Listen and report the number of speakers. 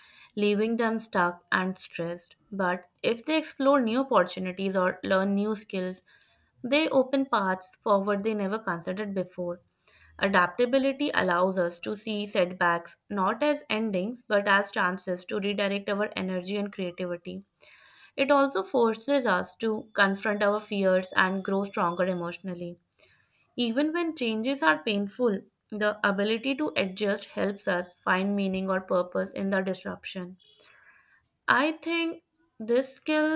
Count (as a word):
one